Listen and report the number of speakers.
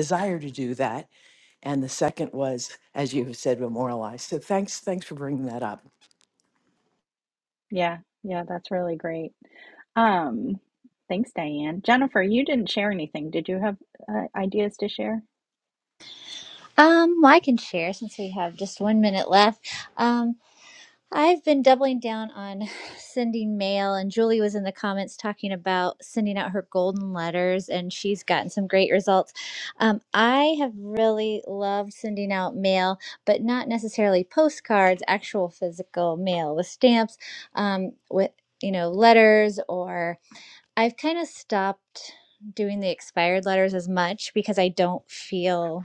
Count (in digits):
3